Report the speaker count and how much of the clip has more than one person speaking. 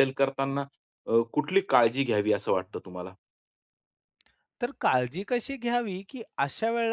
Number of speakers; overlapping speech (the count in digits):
2, no overlap